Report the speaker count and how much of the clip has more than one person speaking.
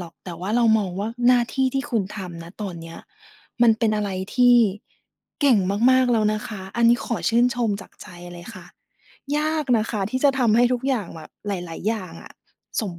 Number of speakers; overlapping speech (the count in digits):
1, no overlap